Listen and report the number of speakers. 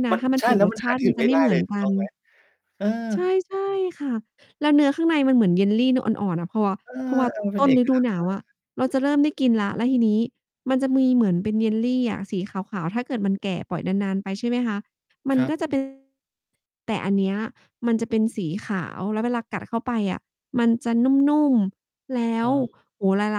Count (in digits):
2